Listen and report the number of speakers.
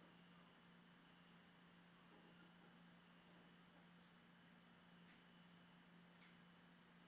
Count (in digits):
0